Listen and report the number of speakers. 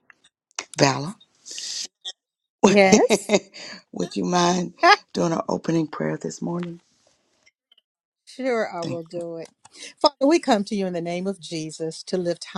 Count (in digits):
2